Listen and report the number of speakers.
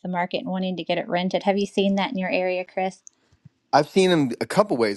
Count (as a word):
two